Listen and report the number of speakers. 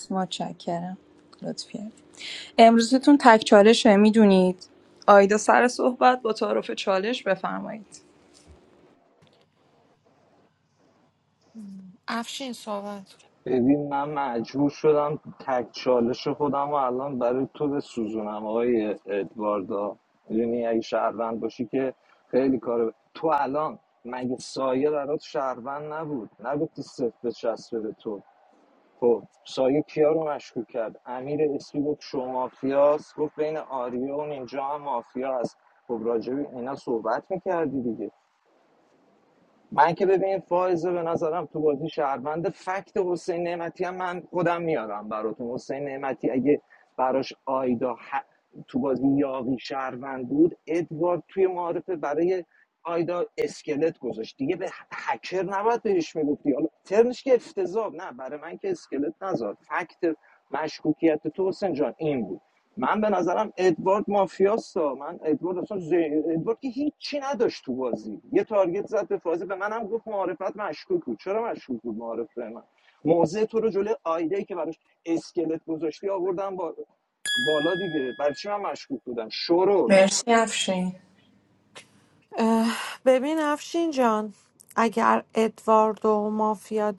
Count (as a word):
three